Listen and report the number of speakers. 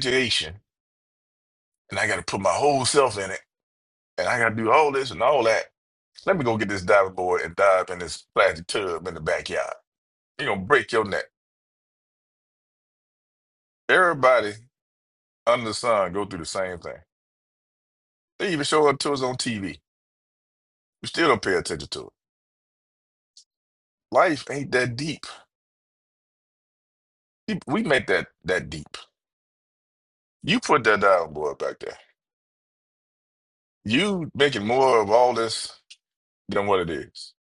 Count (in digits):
1